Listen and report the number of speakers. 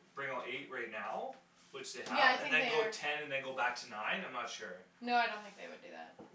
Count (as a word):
two